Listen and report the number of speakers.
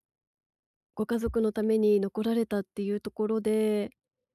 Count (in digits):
1